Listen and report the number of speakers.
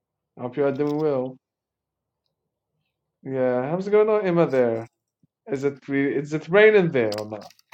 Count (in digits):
1